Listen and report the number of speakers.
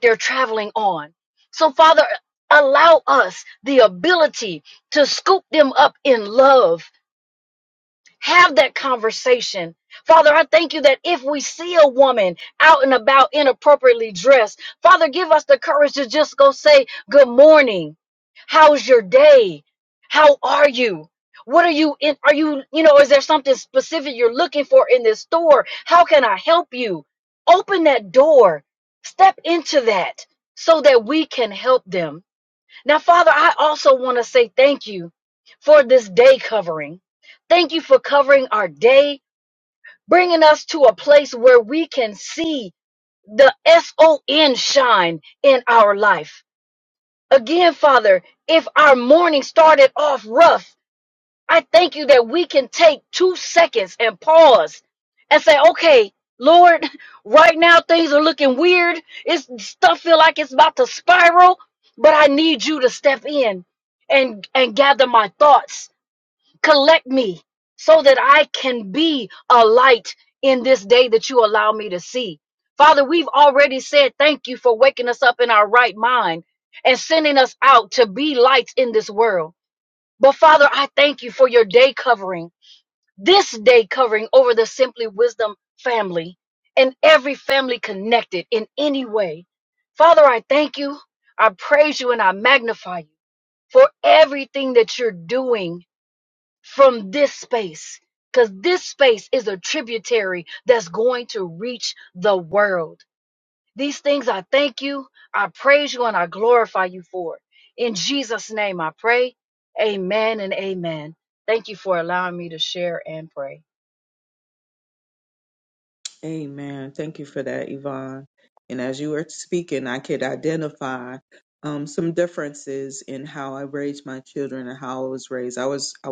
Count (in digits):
2